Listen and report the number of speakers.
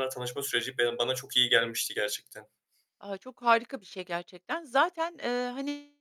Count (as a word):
two